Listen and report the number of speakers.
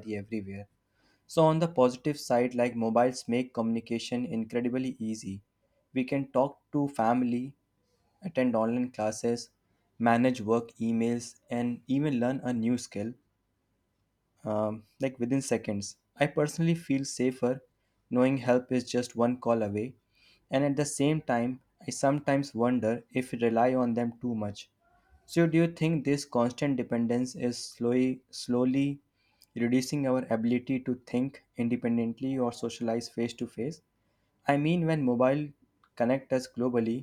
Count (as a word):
one